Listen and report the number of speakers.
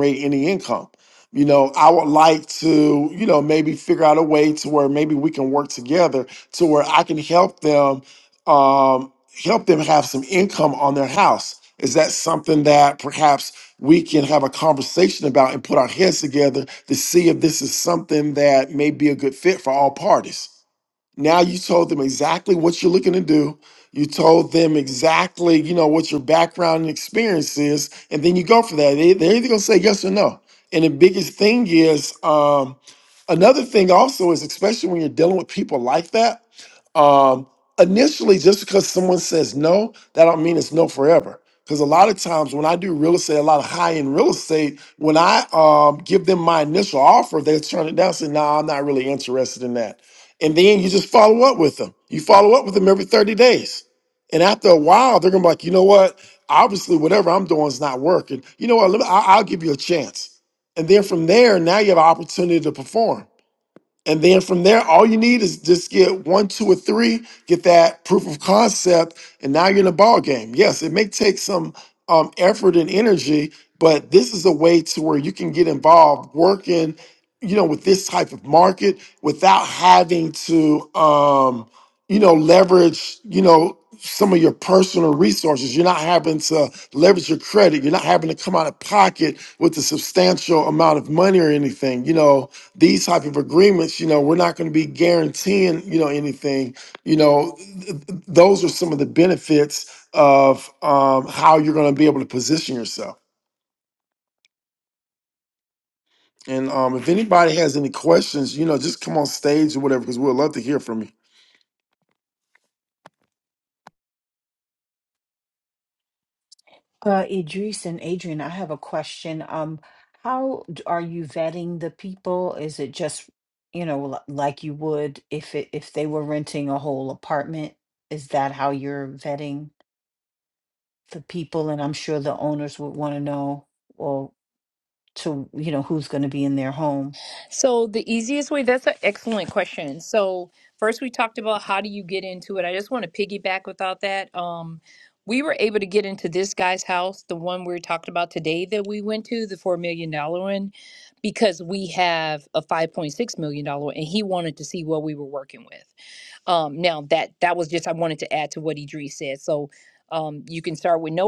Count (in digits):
3